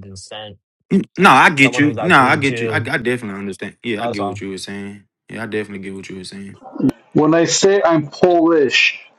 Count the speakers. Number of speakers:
3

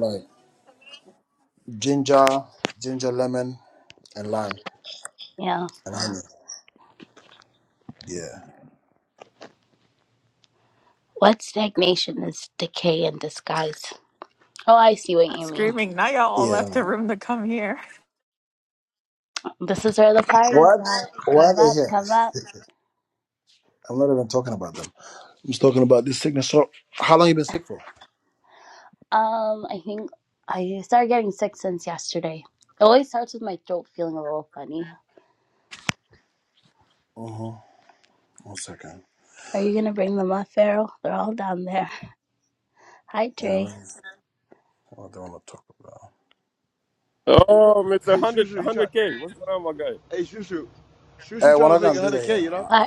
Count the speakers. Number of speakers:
5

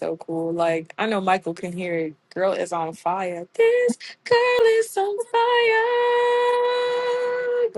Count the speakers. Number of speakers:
1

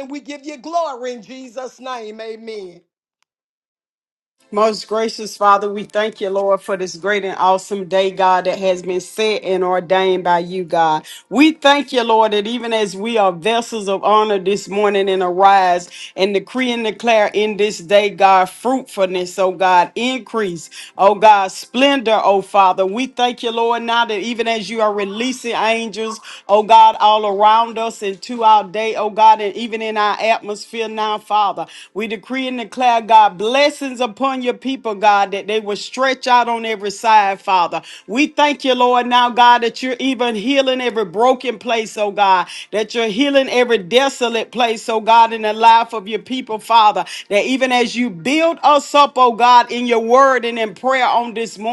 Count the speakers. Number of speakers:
2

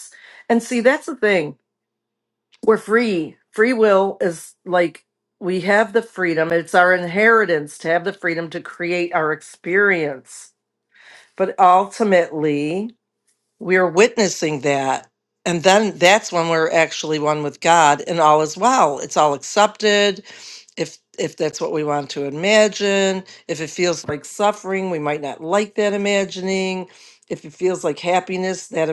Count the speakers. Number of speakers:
1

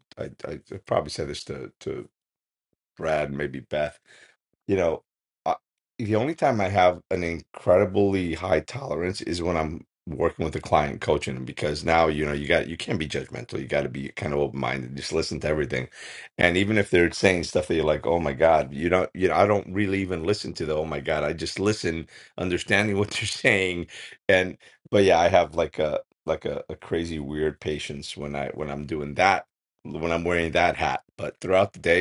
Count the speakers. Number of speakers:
1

